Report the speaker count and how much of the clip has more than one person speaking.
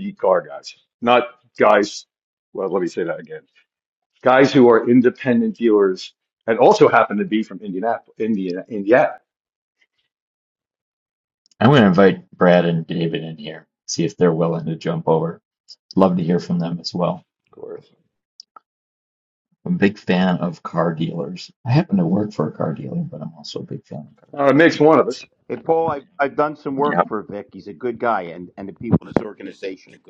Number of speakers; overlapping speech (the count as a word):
three, about 1%